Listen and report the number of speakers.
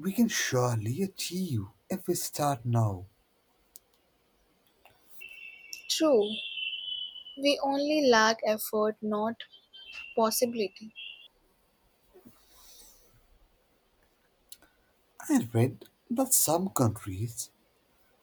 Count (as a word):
two